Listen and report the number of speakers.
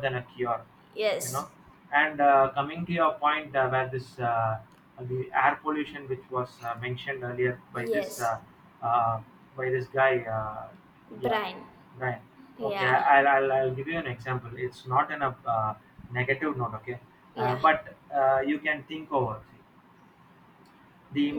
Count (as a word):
two